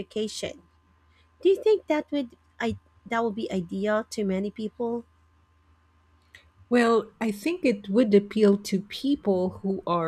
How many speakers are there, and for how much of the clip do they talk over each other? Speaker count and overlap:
2, no overlap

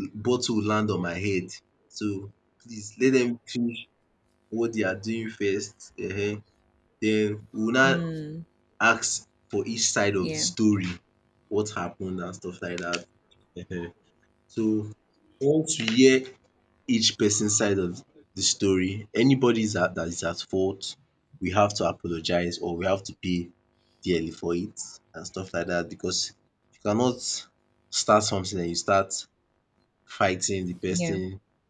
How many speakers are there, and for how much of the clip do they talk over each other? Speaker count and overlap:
2, about 2%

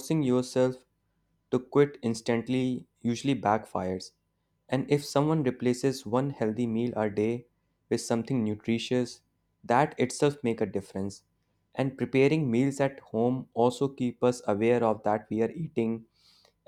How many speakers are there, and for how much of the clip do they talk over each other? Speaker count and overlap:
1, no overlap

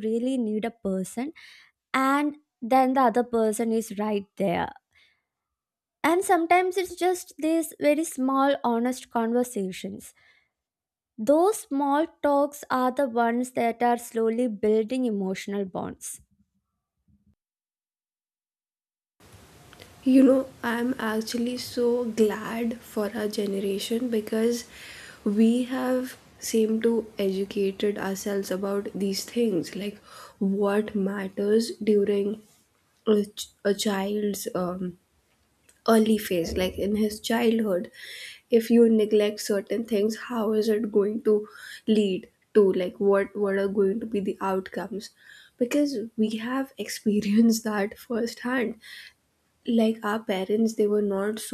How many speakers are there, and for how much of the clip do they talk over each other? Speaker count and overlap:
2, no overlap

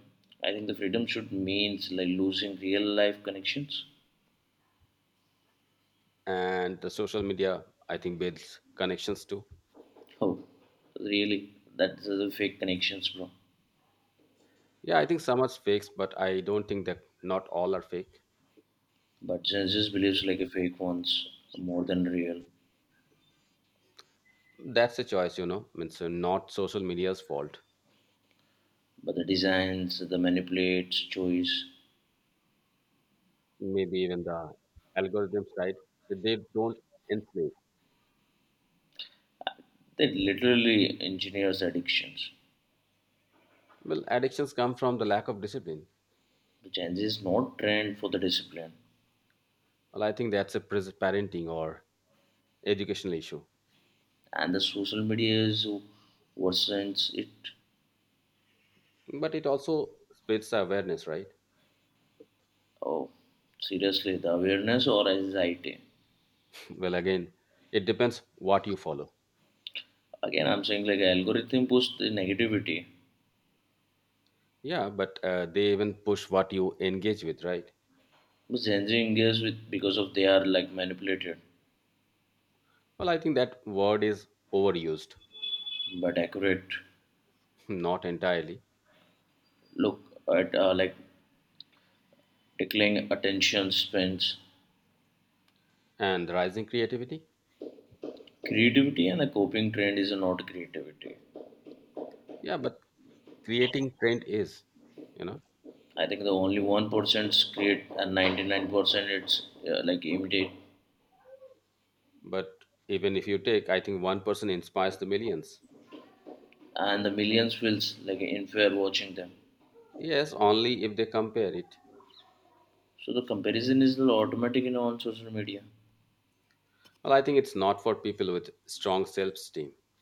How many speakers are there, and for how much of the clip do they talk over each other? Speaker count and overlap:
2, no overlap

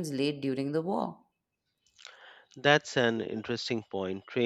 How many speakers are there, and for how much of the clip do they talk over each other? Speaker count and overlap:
2, no overlap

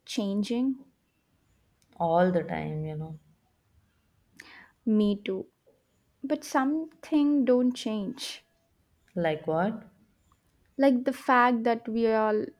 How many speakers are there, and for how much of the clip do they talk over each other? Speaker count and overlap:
2, no overlap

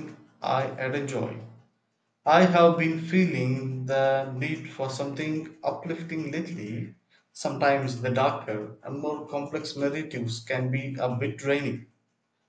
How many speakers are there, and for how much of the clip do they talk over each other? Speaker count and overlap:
1, no overlap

